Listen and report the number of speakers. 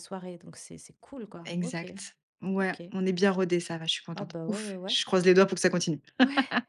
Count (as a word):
two